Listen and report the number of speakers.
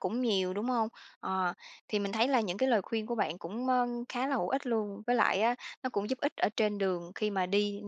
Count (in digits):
1